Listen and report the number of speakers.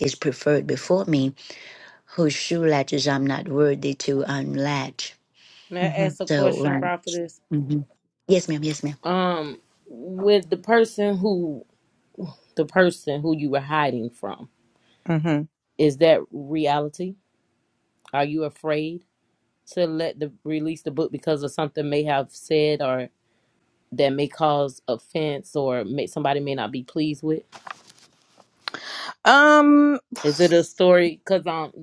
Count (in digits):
3